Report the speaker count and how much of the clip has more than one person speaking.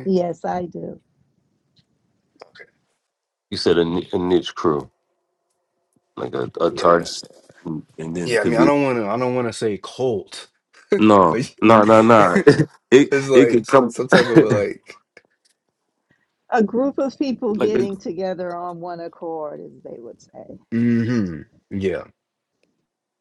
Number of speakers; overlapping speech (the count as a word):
three, about 11%